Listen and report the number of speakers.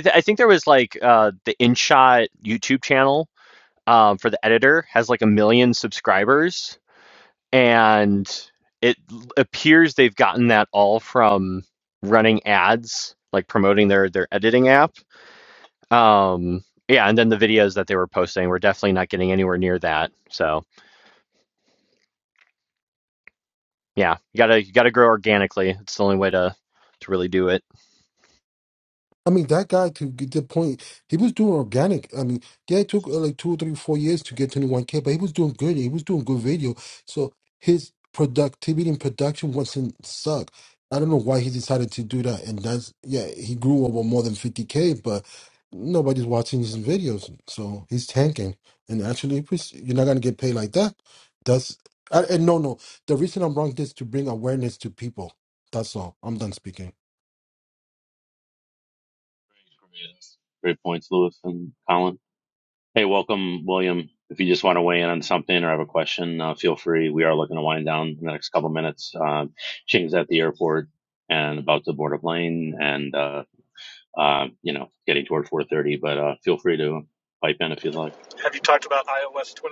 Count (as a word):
four